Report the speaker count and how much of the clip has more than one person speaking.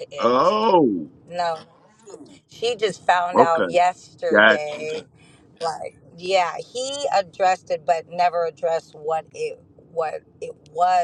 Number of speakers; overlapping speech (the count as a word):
two, about 9%